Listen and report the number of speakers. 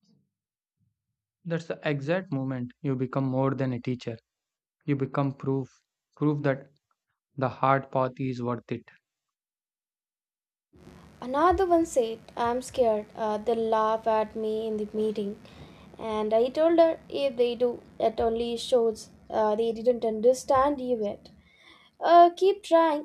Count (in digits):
2